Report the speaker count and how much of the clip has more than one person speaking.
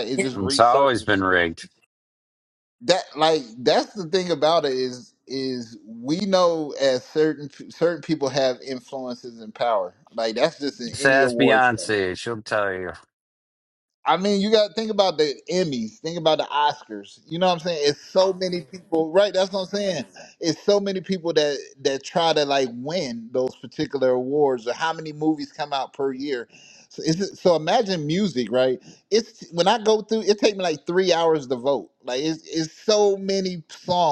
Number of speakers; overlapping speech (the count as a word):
two, about 5%